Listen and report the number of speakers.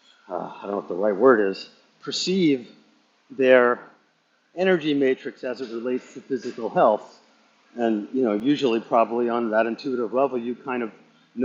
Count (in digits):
1